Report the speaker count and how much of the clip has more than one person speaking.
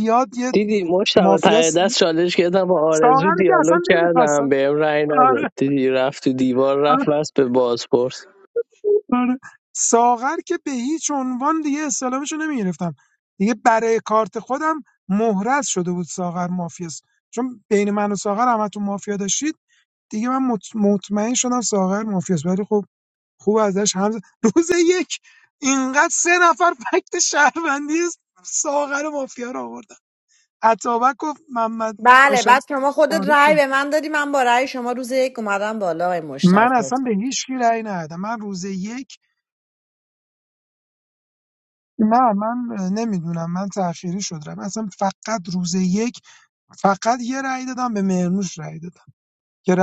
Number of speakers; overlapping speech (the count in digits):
3, about 7%